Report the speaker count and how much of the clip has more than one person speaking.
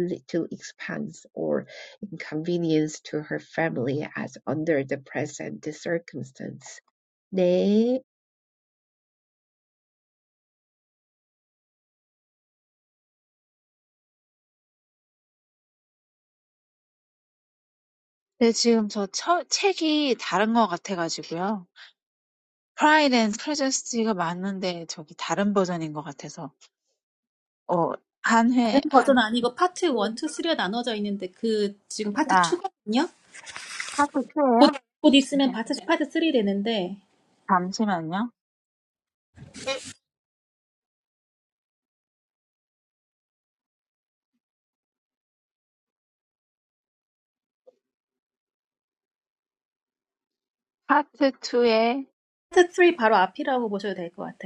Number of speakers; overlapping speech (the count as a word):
three, about 2%